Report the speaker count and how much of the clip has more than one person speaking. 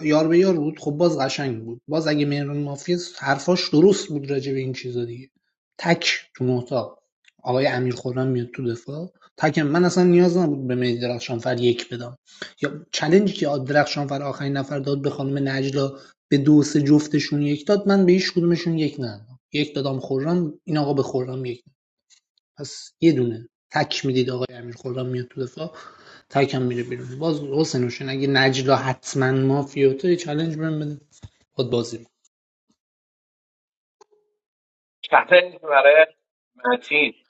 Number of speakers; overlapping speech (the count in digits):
2, no overlap